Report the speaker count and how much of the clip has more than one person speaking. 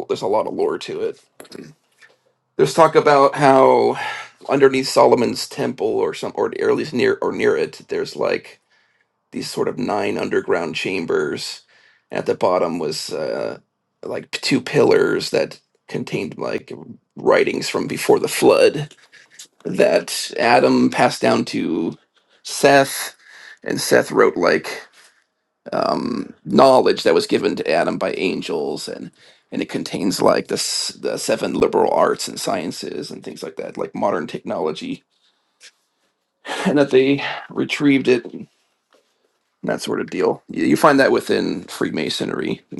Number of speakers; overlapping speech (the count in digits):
1, no overlap